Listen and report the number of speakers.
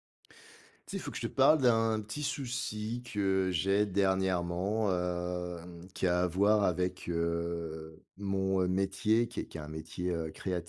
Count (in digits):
1